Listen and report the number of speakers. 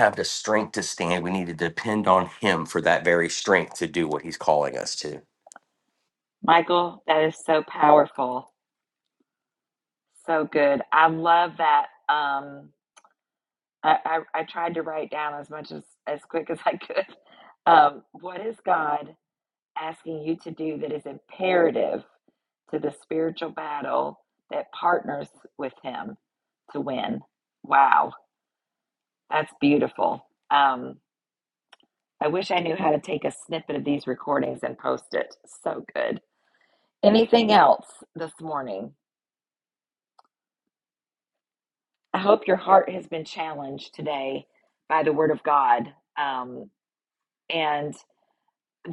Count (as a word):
two